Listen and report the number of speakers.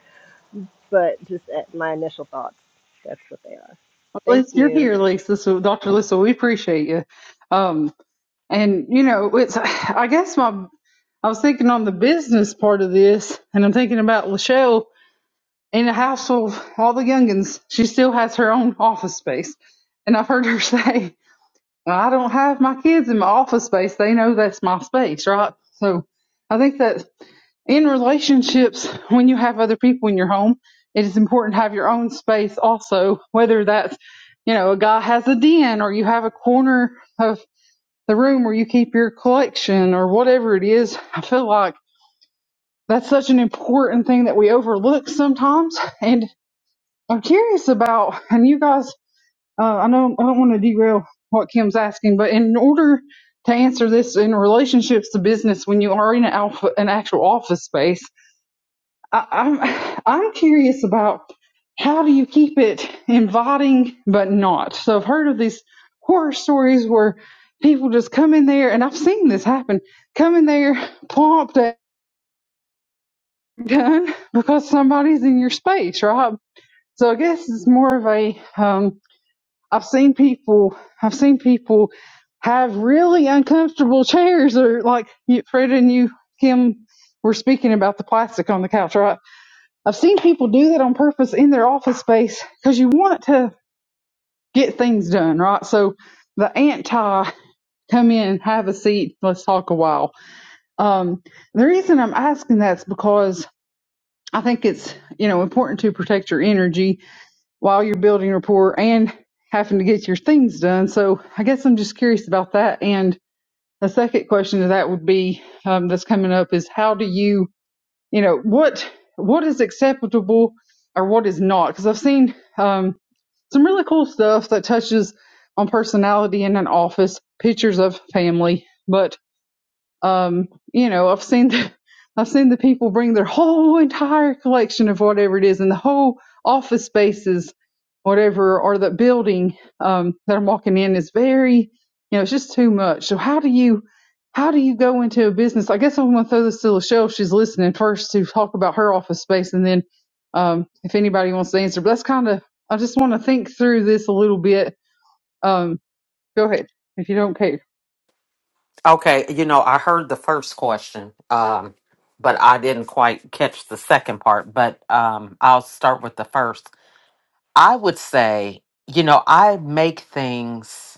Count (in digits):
3